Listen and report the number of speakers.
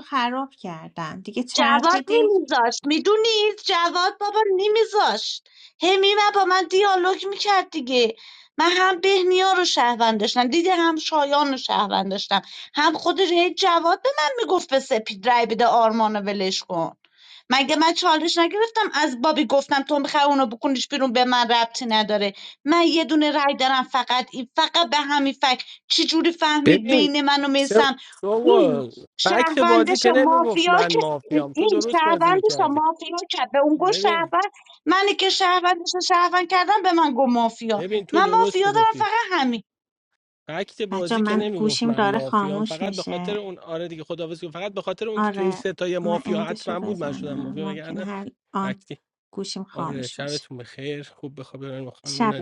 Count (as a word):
three